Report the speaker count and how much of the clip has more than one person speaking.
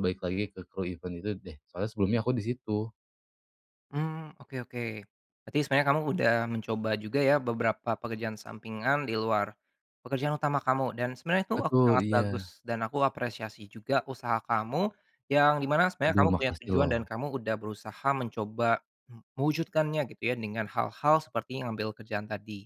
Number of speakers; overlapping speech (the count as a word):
two, about 8%